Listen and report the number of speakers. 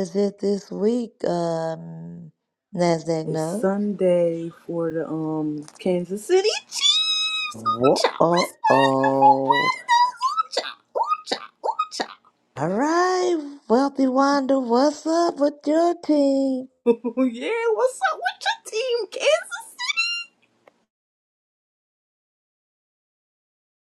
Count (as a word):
two